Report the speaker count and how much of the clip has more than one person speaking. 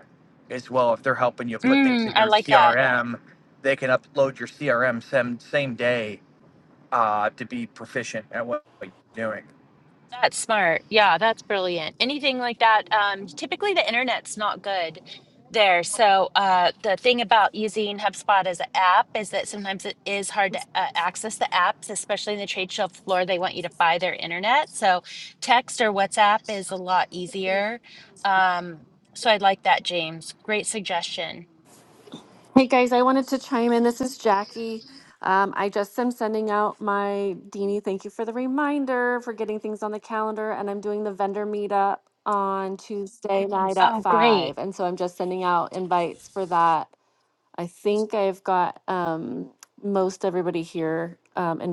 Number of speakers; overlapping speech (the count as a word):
three, about 4%